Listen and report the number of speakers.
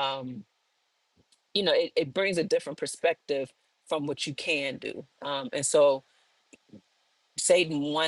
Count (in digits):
1